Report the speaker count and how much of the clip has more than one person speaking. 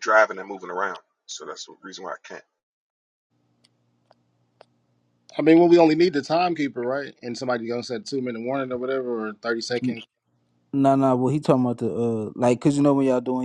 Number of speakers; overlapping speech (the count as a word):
three, about 2%